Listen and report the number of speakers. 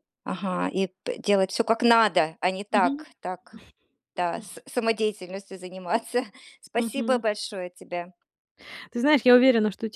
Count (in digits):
2